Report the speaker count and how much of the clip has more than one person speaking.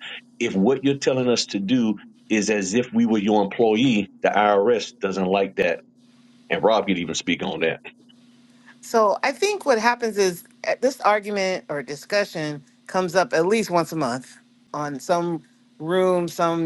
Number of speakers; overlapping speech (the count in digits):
2, no overlap